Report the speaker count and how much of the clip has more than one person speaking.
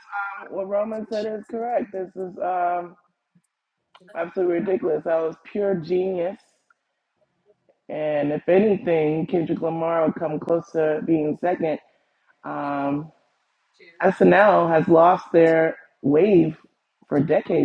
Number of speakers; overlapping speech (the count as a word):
one, no overlap